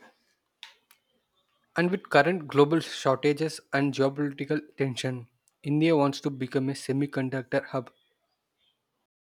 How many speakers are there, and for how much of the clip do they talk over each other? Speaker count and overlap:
1, no overlap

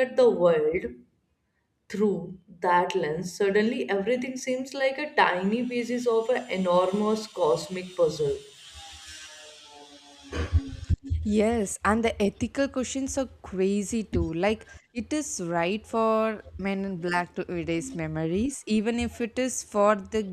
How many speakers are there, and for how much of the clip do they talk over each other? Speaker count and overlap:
2, no overlap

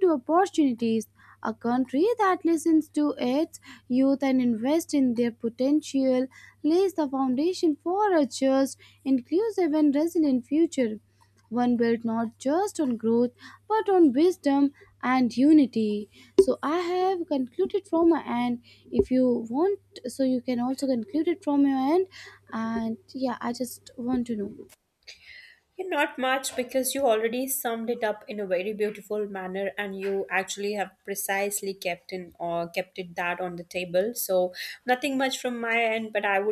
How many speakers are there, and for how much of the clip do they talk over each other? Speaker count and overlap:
2, no overlap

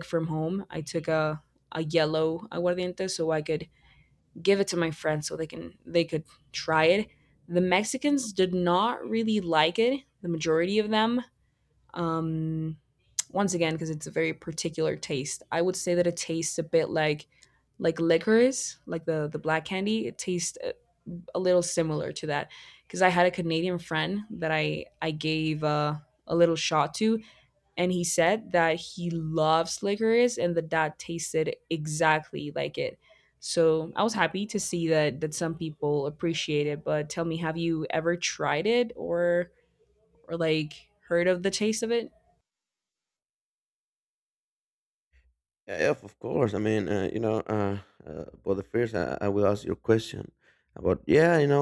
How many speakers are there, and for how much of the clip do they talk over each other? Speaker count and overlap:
2, no overlap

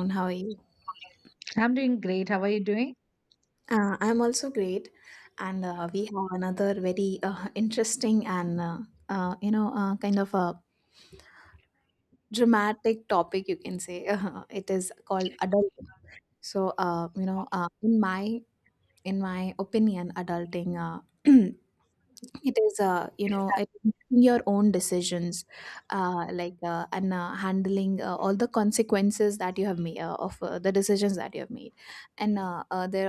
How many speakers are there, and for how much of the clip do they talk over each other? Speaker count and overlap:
2, no overlap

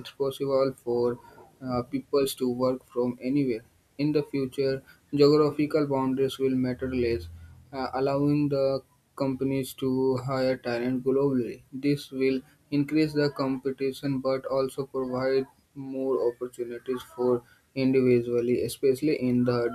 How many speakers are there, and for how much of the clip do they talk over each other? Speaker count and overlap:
1, no overlap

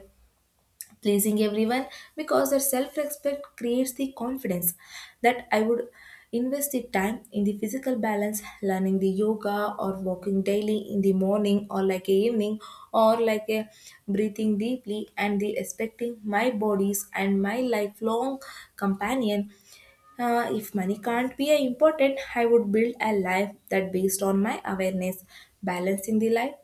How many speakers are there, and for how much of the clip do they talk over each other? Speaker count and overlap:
1, no overlap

